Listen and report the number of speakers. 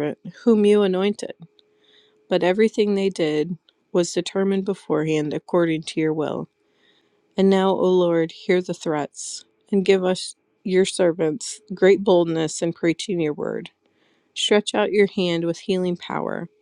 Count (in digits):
1